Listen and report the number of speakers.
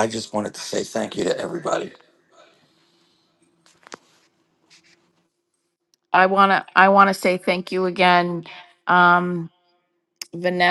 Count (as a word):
two